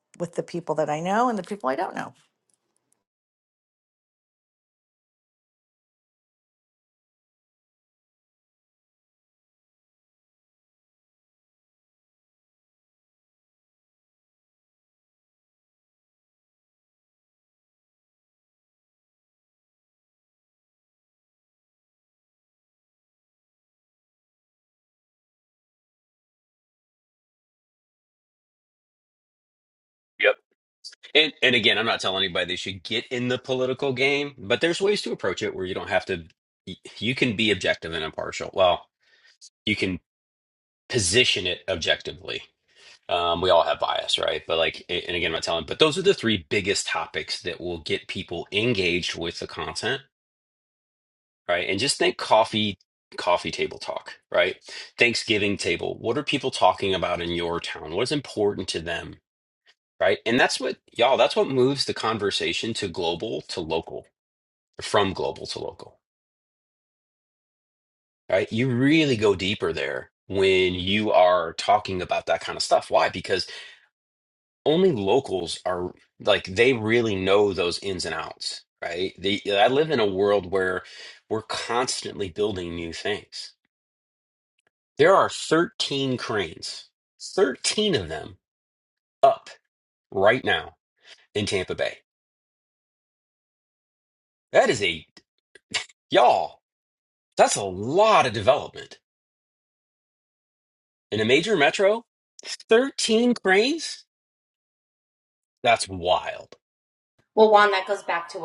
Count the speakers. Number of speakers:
3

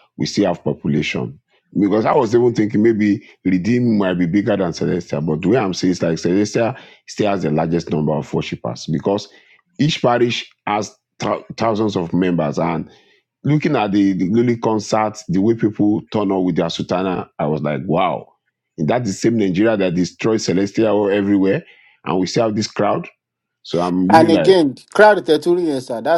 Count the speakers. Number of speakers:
2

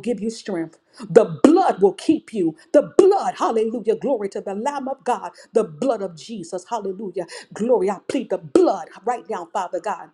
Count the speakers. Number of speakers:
1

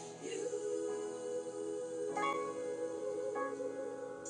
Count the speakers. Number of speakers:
0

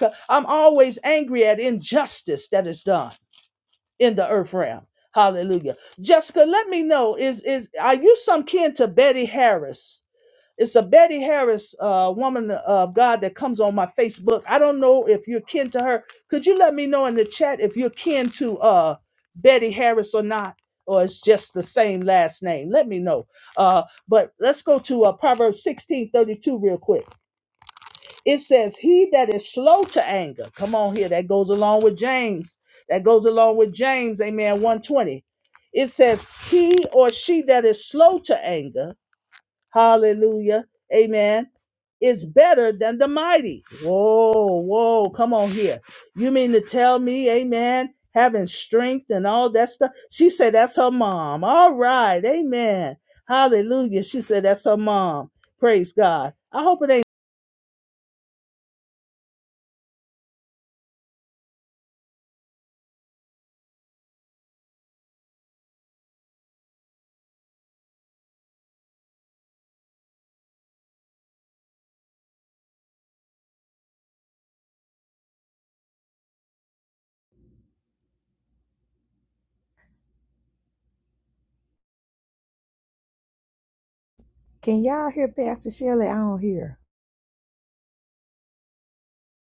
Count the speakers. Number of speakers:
2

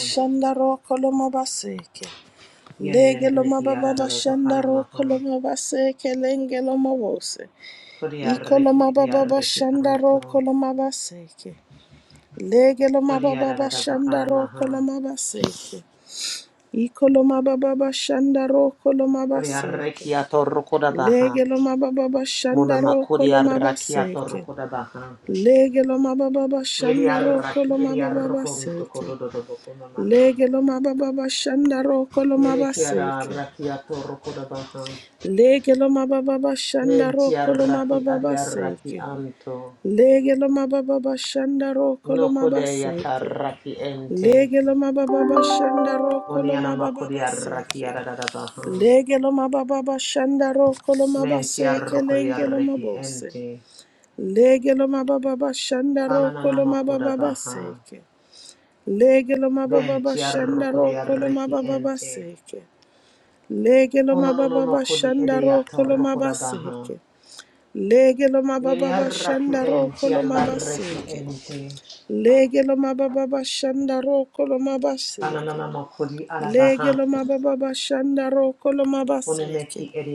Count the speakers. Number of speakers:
2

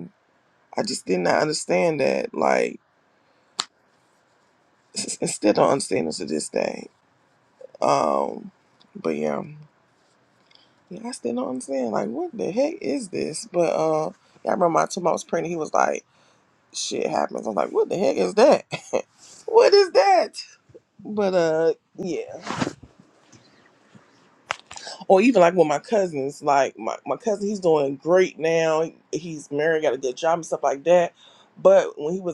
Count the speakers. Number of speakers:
1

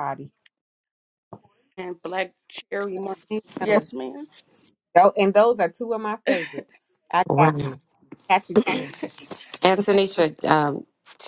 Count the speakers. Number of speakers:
3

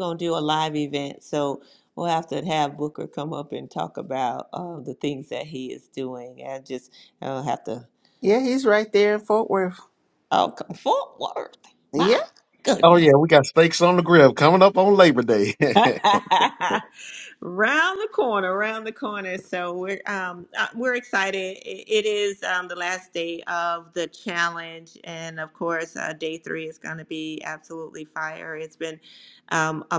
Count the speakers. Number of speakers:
3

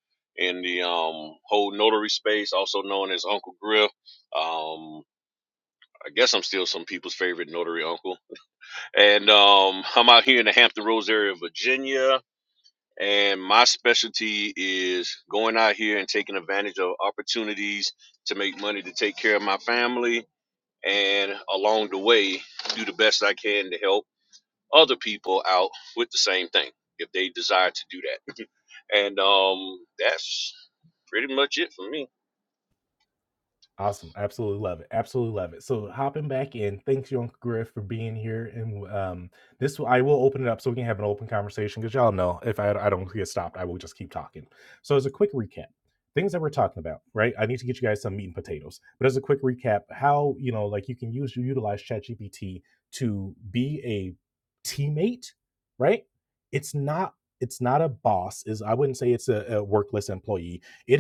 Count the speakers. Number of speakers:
2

